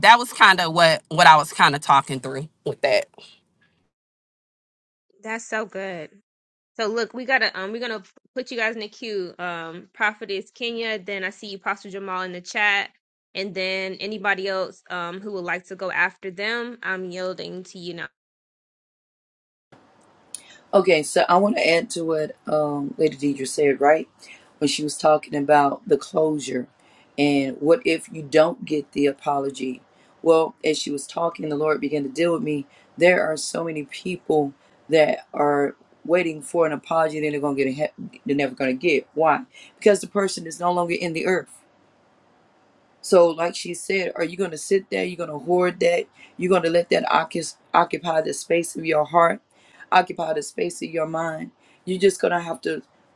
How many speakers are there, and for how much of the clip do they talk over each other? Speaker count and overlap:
3, no overlap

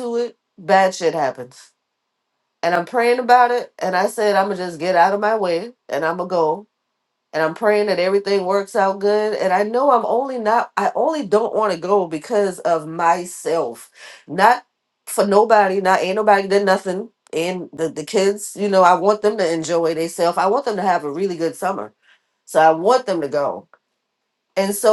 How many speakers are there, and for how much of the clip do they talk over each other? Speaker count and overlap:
1, no overlap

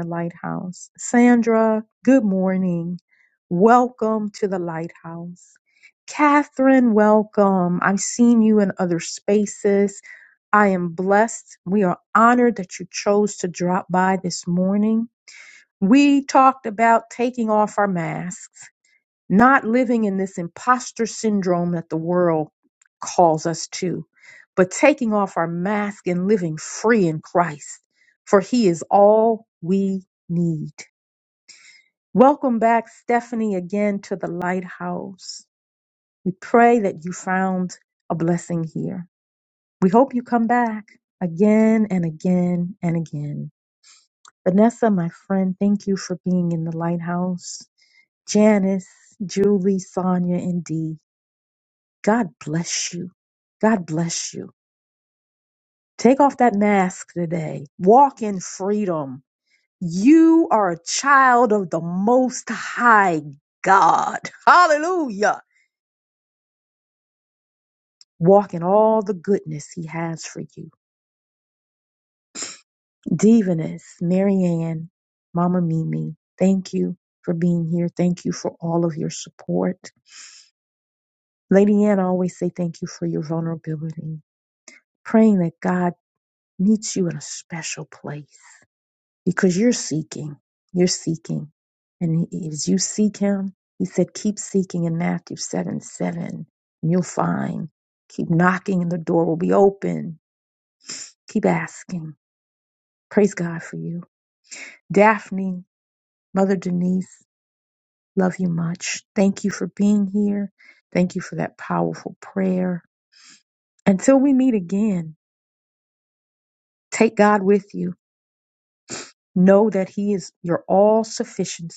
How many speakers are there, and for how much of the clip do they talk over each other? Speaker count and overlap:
1, no overlap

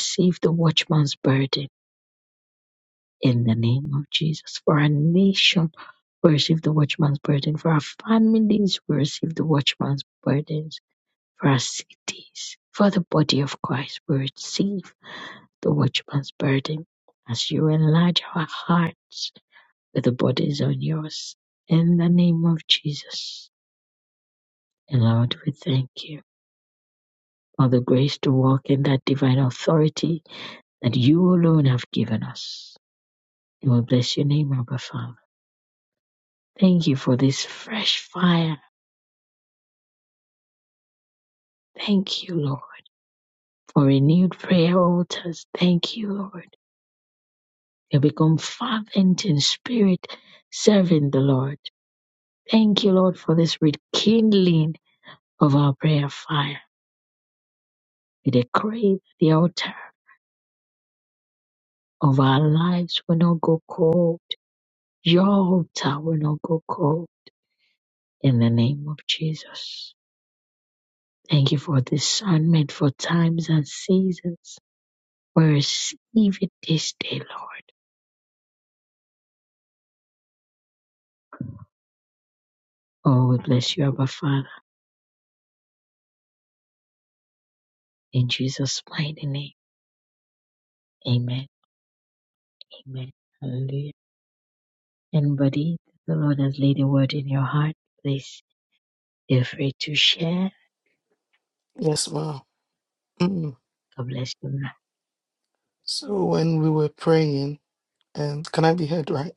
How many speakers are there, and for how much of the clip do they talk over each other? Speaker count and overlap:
2, no overlap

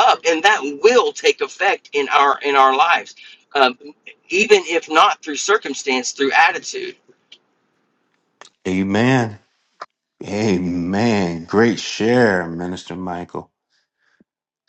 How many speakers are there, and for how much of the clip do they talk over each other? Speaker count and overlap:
2, no overlap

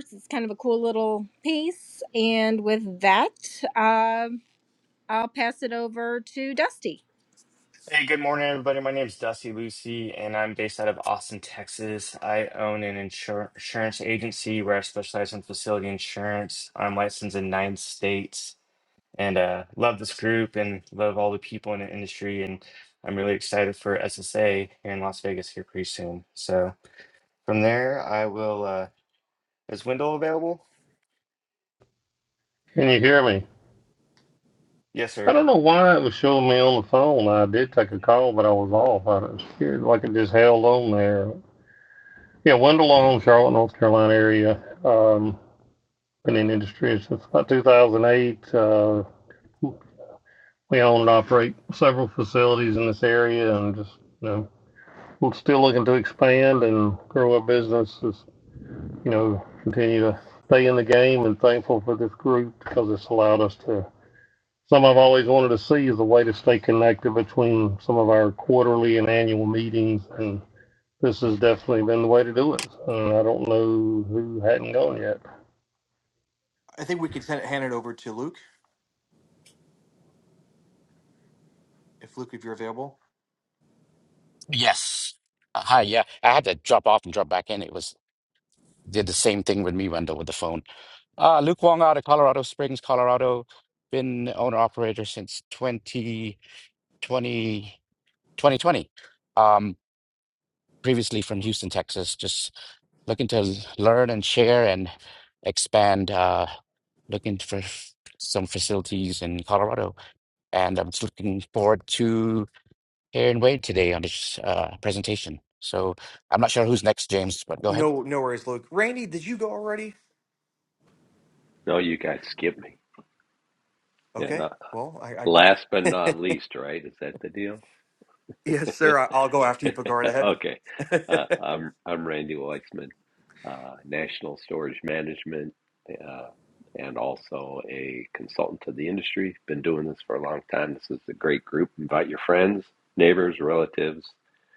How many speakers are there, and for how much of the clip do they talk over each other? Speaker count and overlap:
6, about 1%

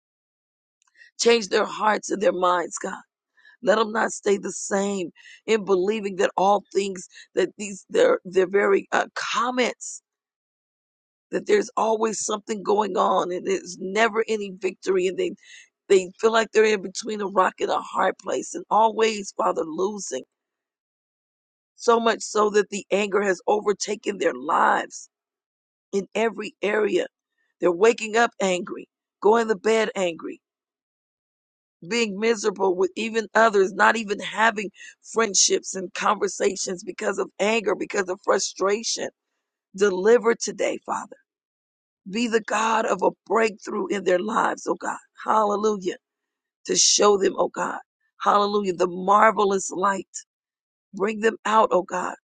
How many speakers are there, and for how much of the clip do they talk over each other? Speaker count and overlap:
1, no overlap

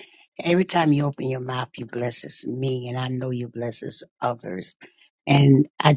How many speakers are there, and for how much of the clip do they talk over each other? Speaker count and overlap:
1, no overlap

